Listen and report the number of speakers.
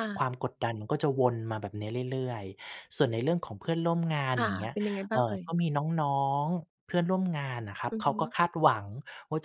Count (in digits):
2